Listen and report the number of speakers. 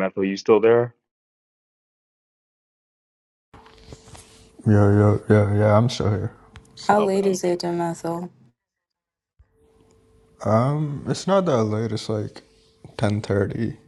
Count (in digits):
3